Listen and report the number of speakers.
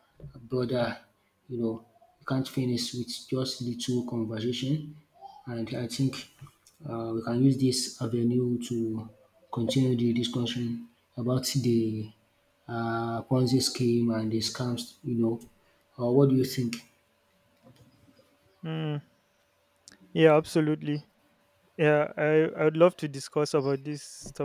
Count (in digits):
2